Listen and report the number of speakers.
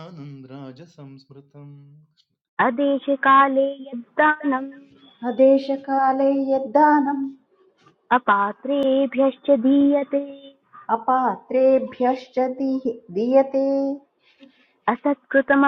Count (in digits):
3